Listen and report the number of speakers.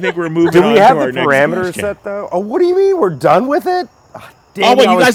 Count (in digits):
2